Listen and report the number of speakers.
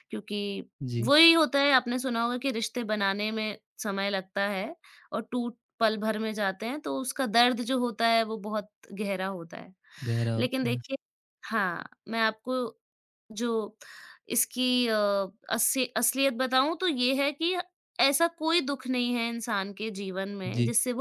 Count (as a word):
two